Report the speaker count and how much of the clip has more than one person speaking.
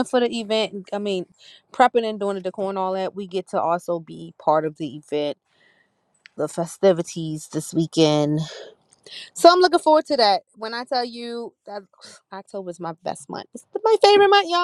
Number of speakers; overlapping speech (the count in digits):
1, no overlap